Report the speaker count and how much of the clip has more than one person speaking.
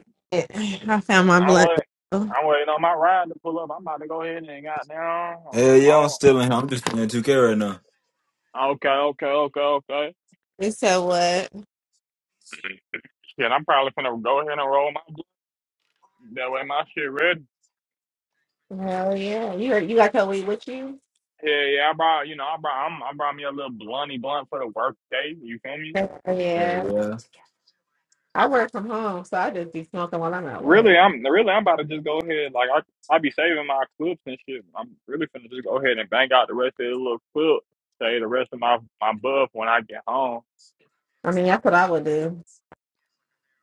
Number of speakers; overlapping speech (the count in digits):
3, about 4%